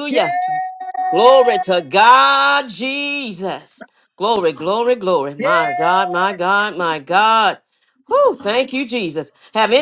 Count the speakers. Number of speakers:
2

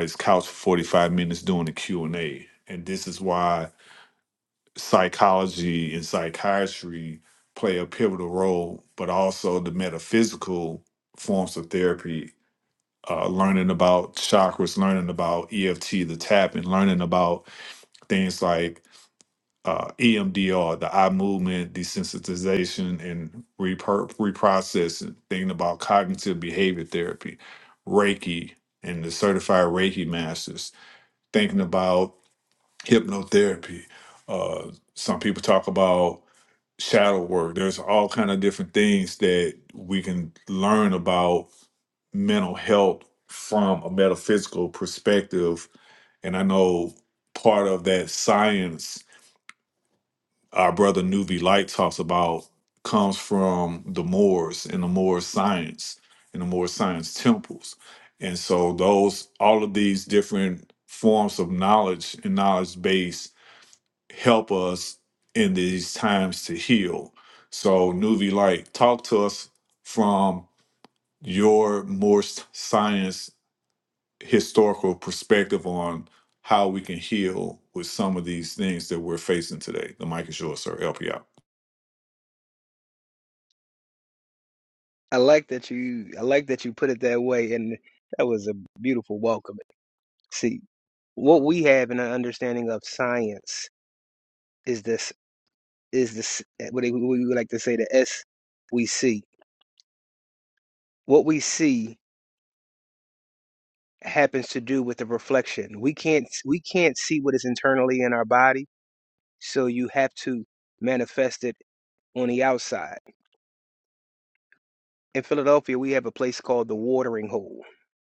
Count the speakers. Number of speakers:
2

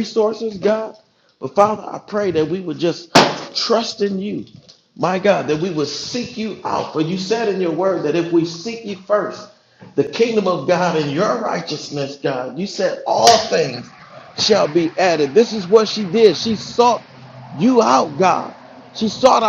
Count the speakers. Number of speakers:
1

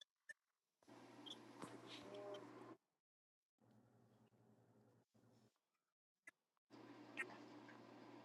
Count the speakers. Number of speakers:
0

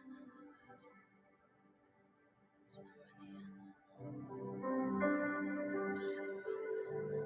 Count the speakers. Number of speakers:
0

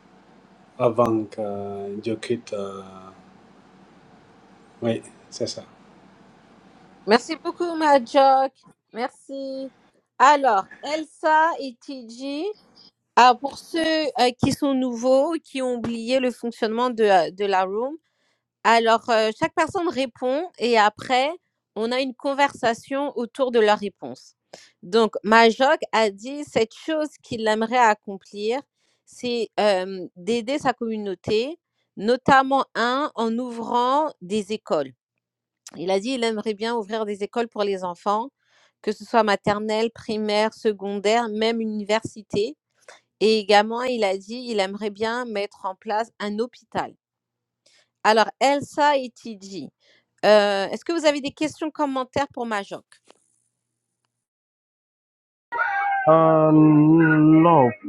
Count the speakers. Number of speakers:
3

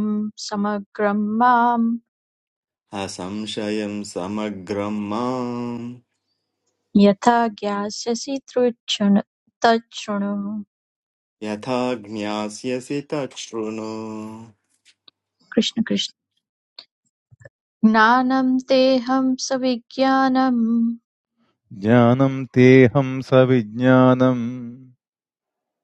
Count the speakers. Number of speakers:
3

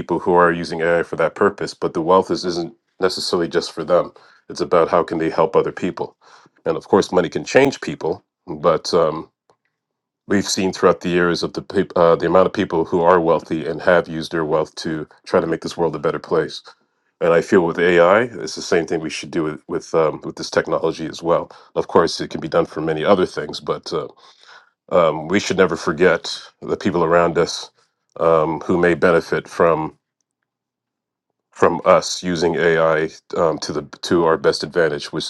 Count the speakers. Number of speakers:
1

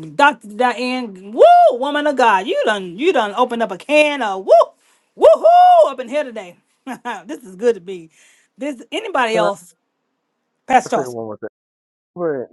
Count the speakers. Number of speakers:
2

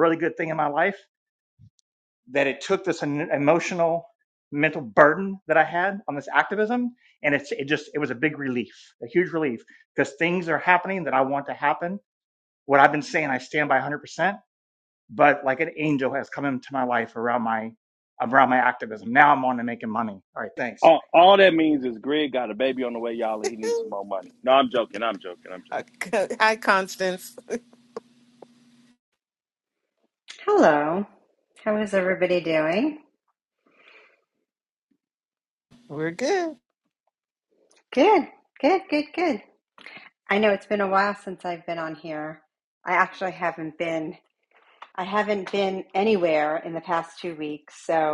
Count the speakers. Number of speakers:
4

